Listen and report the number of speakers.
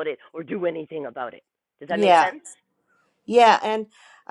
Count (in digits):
2